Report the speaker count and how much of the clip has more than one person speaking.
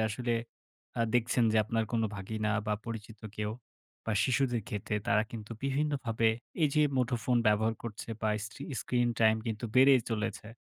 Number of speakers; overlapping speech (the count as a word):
one, no overlap